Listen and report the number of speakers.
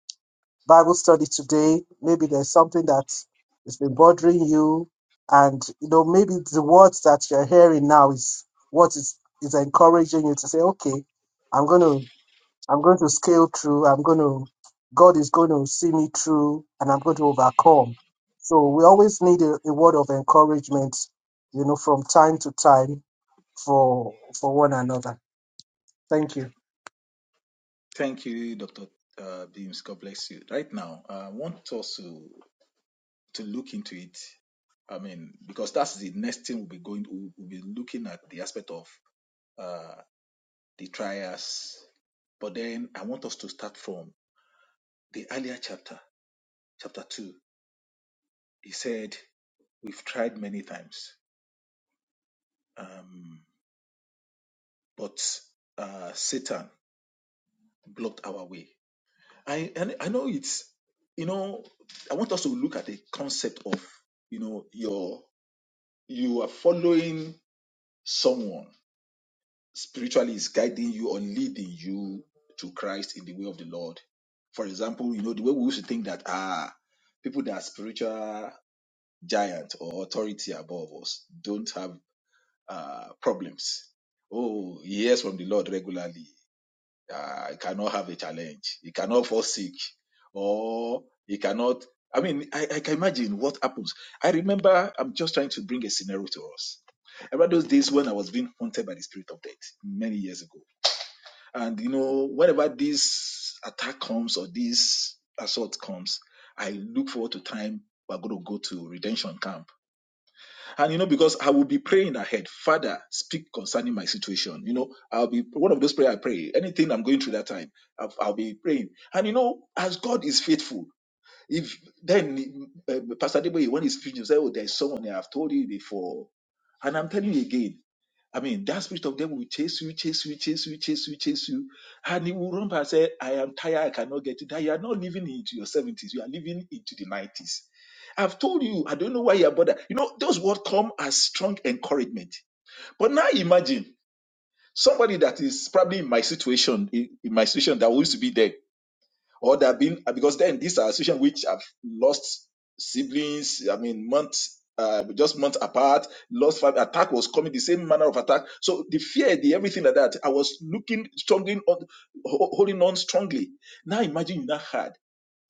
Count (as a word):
two